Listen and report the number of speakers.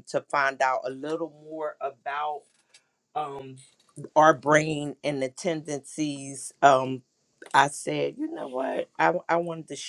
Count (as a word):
one